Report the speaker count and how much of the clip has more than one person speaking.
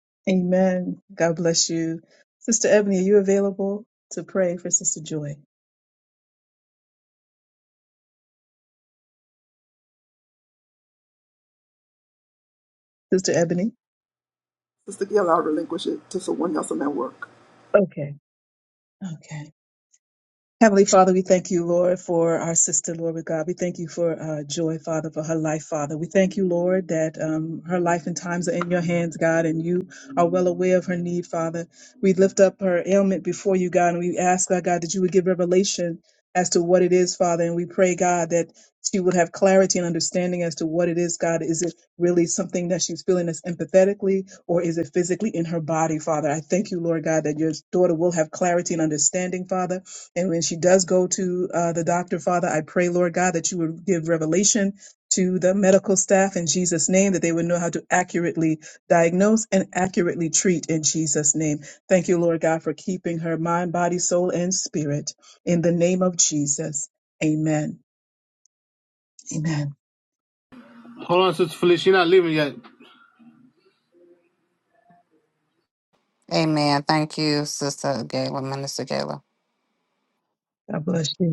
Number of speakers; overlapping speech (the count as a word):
four, no overlap